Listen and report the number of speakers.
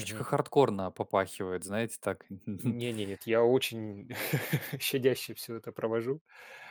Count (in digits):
2